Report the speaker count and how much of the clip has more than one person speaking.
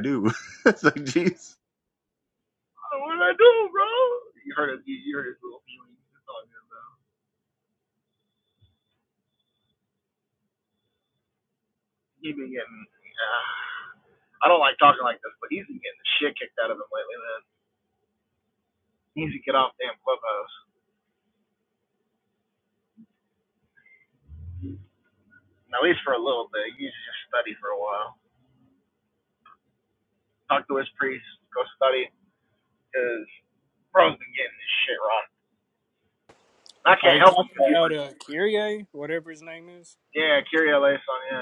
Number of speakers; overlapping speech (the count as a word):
three, about 2%